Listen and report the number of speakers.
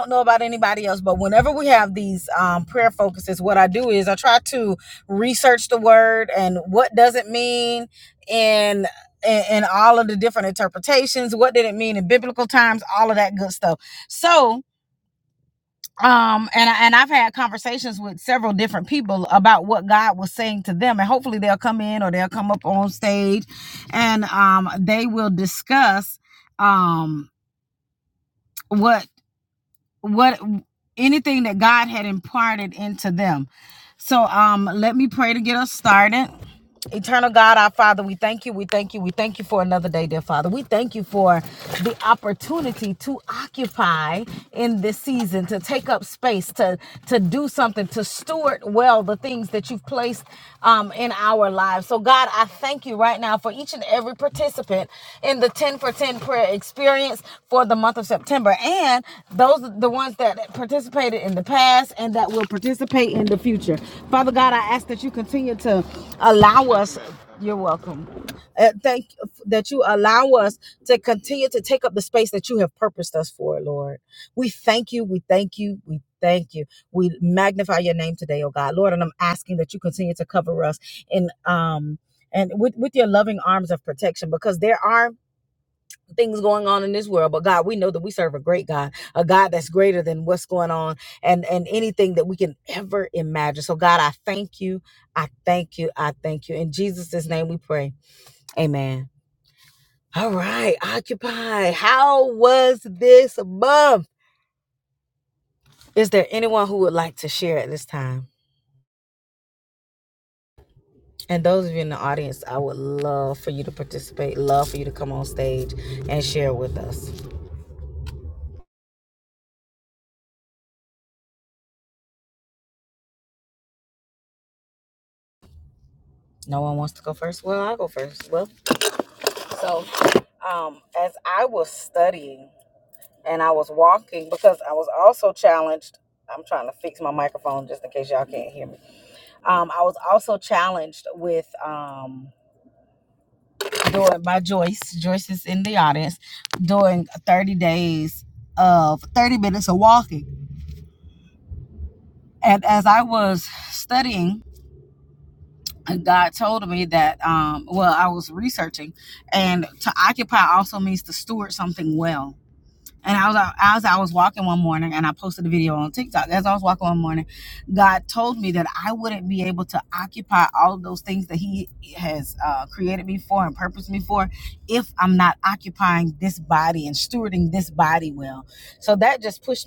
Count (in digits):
1